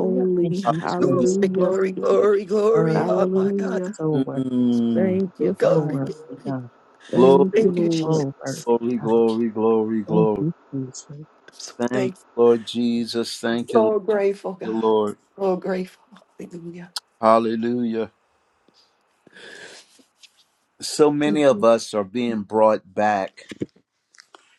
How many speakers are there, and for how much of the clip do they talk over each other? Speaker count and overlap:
4, about 29%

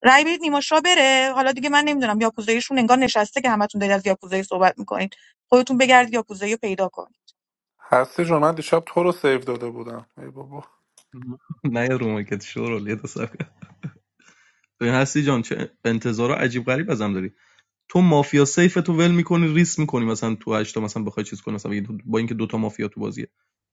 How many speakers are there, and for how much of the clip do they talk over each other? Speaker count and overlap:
3, no overlap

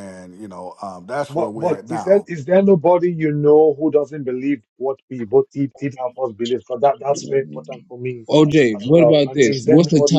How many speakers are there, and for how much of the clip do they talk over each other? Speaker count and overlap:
3, about 23%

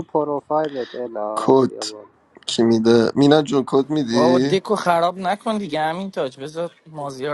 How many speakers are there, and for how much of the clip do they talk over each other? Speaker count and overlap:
3, about 14%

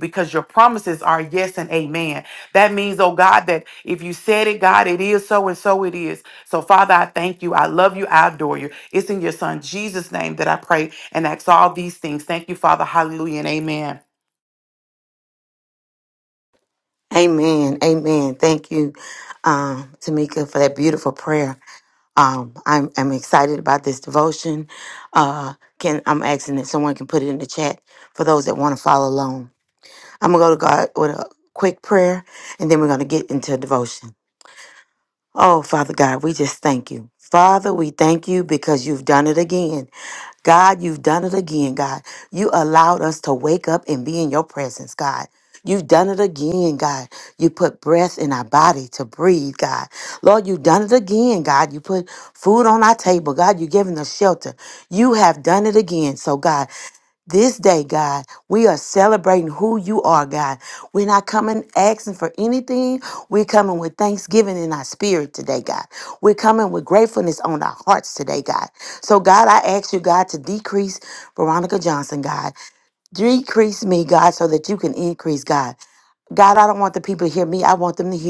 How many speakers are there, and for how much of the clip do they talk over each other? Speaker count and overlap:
2, no overlap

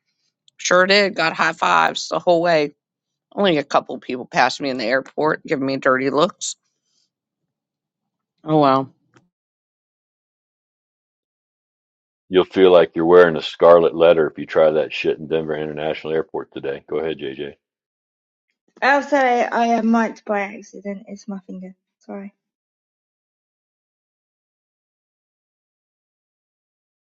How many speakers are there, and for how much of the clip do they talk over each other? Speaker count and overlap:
3, no overlap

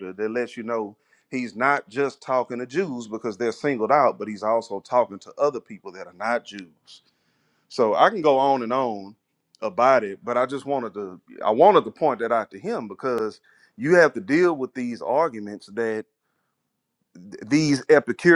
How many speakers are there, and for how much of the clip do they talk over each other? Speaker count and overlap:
1, no overlap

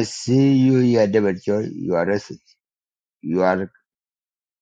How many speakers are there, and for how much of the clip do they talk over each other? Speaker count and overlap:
1, no overlap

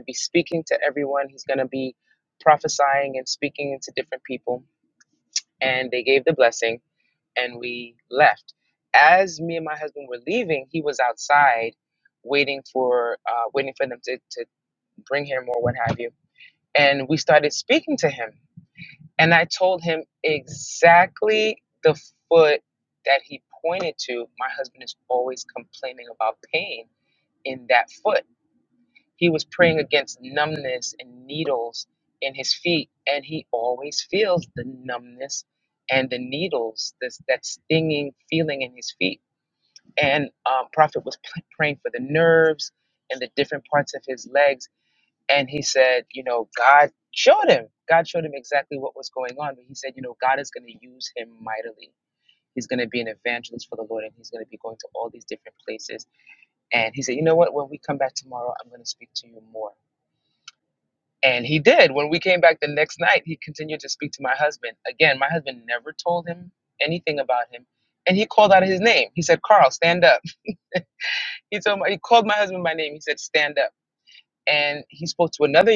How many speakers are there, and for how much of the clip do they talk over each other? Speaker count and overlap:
1, no overlap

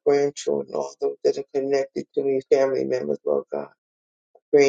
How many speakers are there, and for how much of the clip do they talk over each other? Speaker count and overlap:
1, no overlap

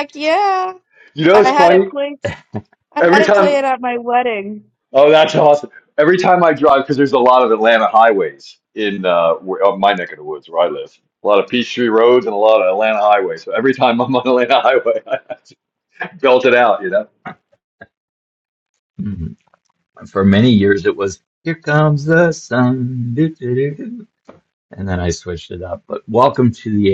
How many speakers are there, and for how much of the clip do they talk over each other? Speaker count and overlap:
3, about 4%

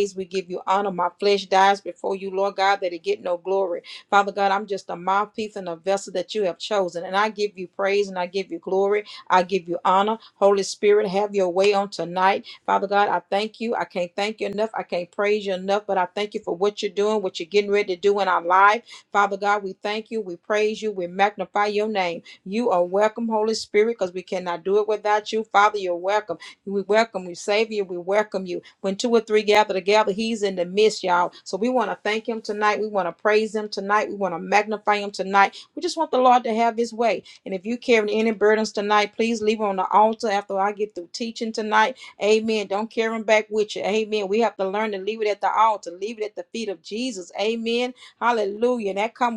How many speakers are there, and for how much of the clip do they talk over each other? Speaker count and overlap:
1, no overlap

